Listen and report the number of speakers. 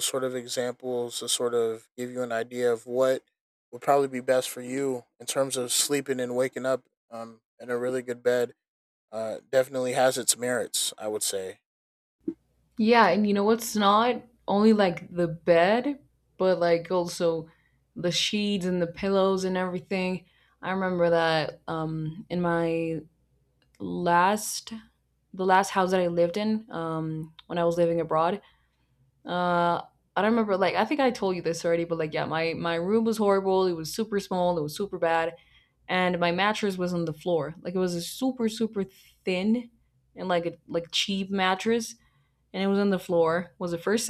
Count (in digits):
2